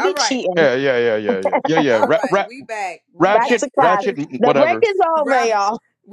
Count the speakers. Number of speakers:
three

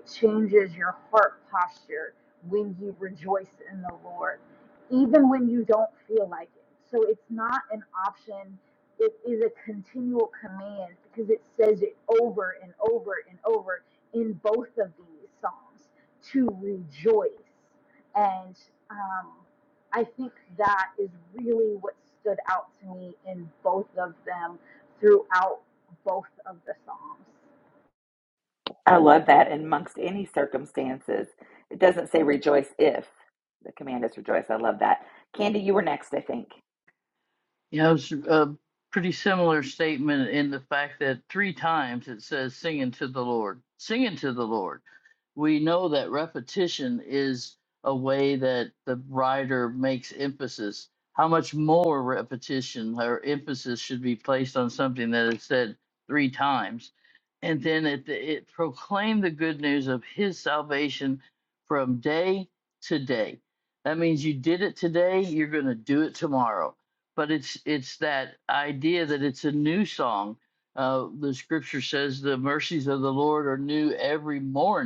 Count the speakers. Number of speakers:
three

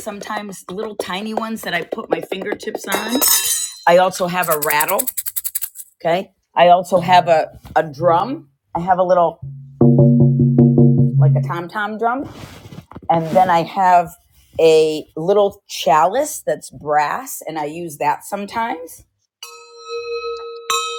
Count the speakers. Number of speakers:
one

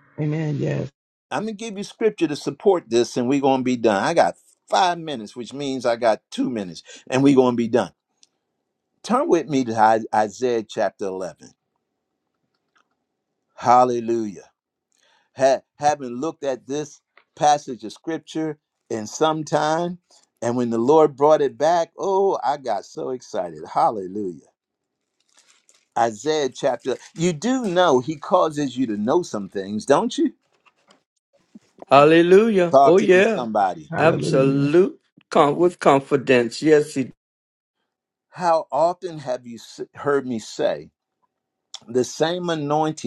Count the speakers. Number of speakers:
three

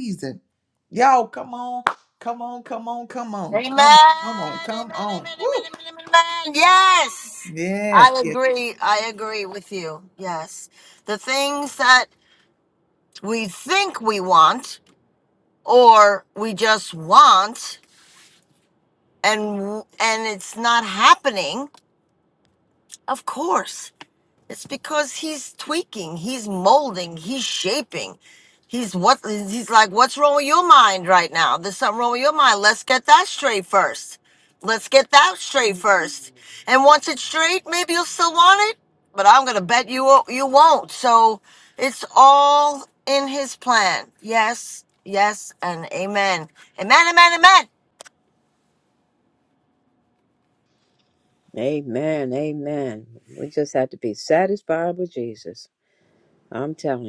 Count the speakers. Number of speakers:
three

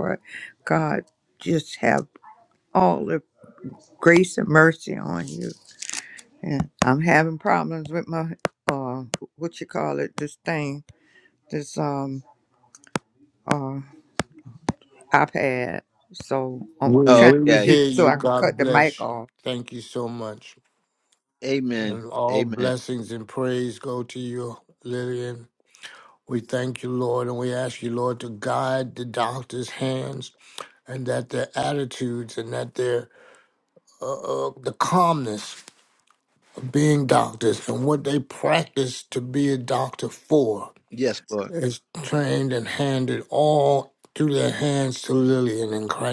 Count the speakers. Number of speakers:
three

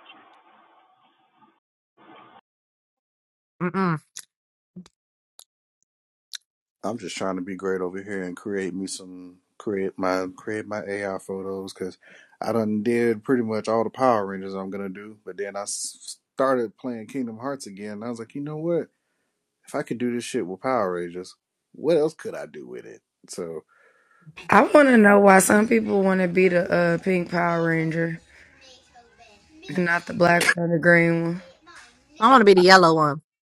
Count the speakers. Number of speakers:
three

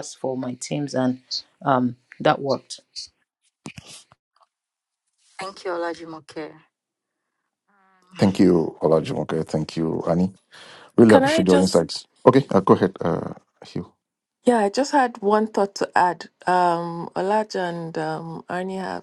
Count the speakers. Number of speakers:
four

